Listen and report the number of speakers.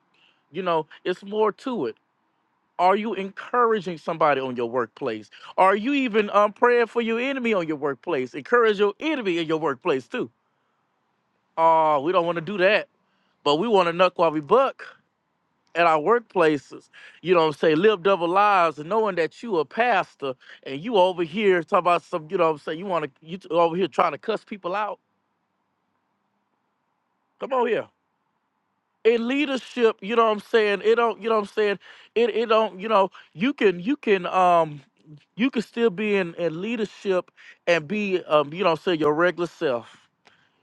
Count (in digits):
1